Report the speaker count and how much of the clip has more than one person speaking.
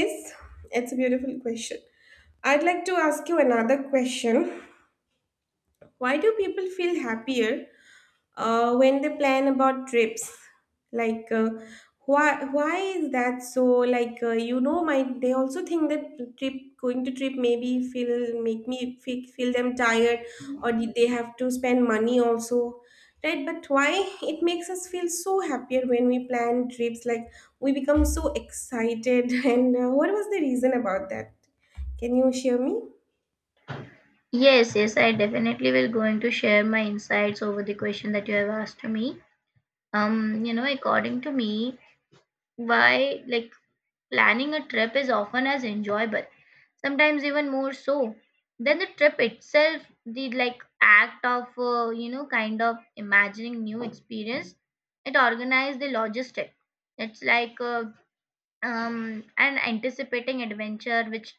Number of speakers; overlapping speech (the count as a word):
two, no overlap